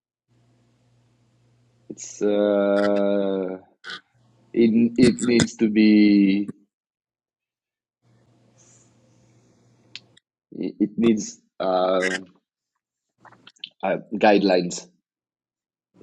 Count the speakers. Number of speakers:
one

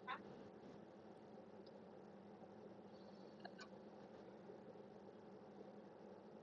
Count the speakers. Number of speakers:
zero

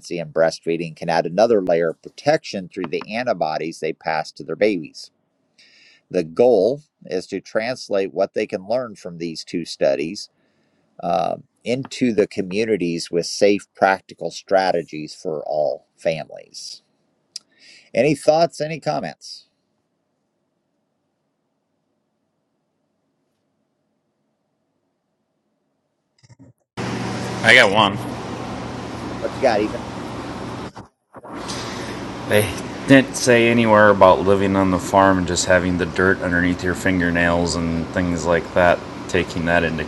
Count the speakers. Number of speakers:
two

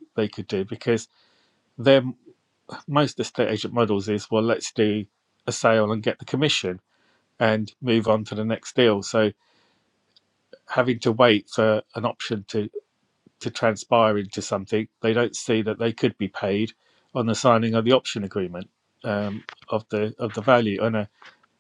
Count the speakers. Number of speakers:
one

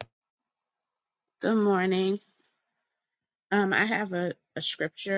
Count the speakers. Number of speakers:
one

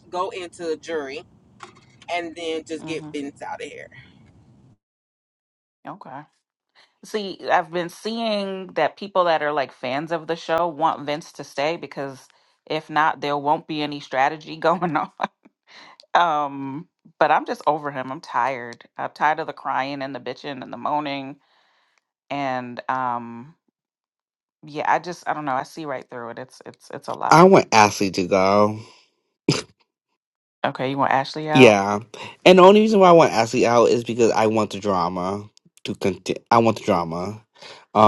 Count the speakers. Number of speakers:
three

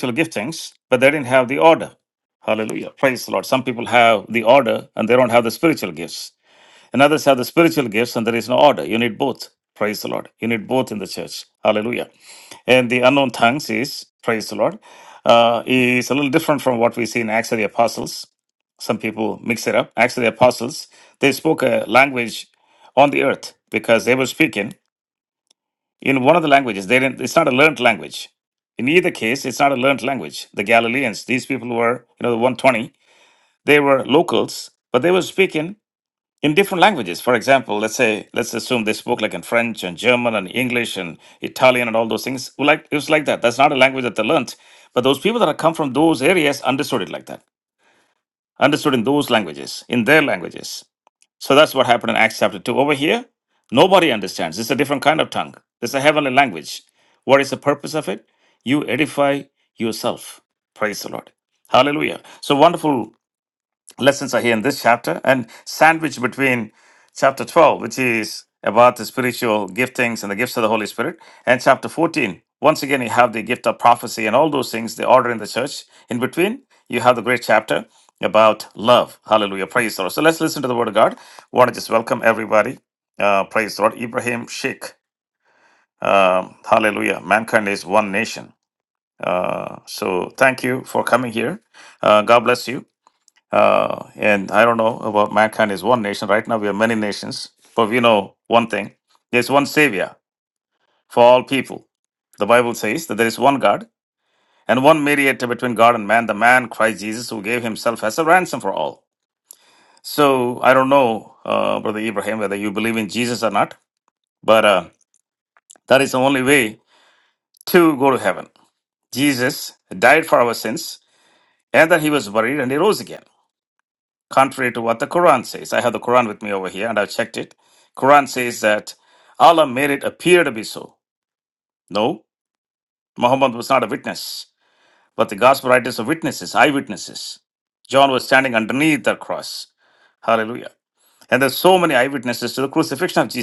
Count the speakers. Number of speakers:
one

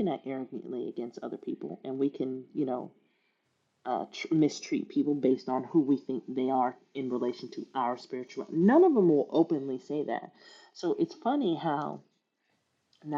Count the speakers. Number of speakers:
one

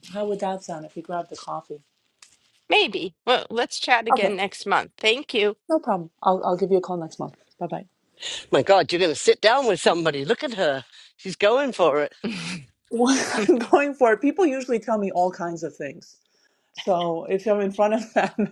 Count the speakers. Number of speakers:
three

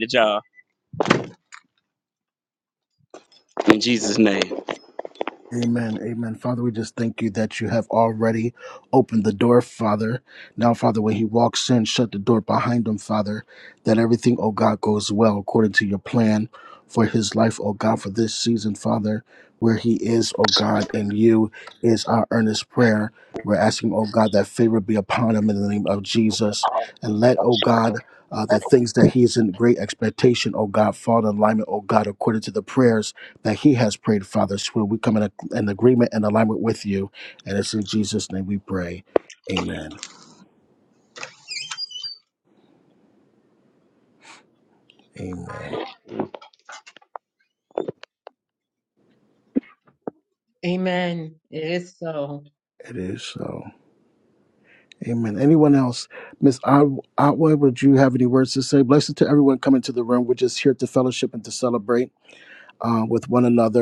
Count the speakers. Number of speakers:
three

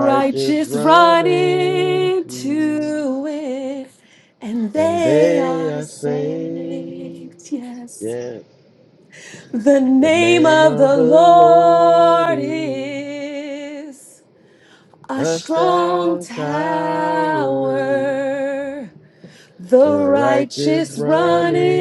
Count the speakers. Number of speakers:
two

